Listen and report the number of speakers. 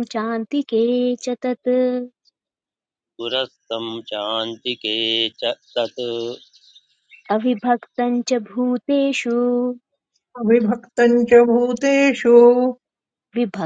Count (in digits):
3